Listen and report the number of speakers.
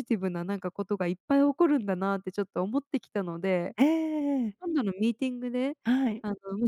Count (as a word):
two